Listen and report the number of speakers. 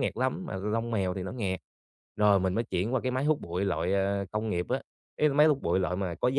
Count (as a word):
one